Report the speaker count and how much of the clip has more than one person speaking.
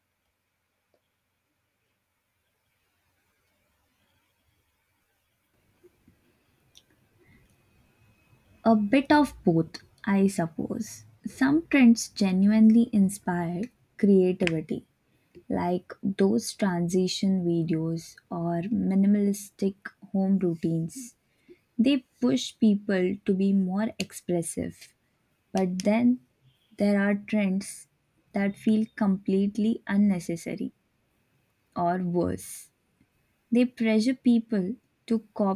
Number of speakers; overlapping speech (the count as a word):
one, no overlap